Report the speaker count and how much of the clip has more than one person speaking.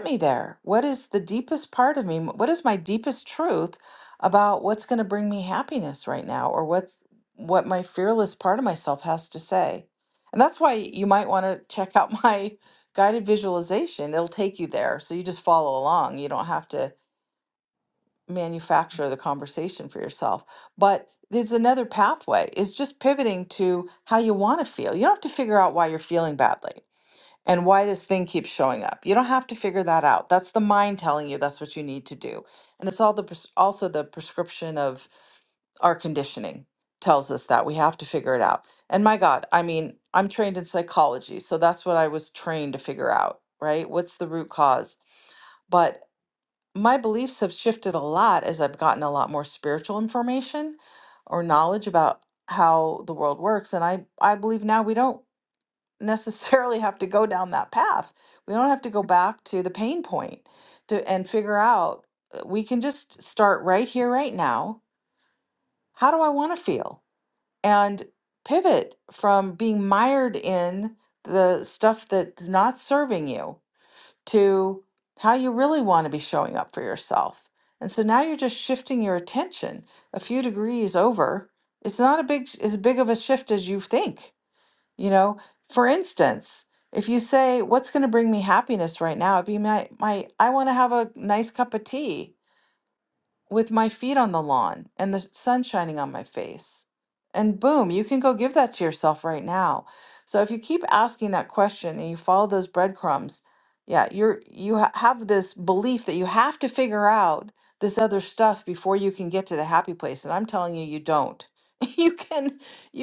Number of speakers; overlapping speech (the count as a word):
one, no overlap